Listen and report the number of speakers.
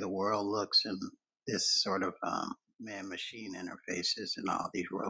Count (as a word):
one